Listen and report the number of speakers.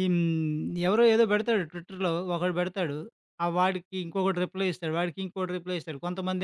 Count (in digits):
1